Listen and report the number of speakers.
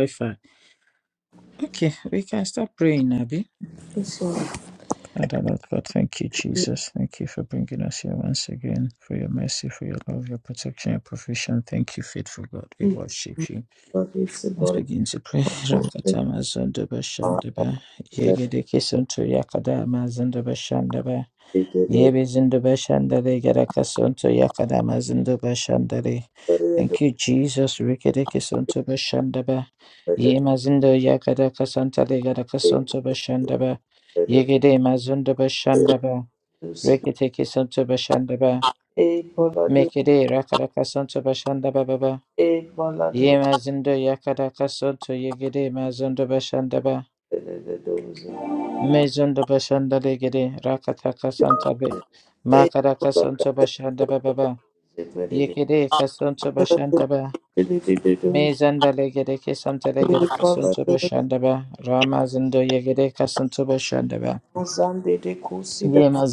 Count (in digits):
2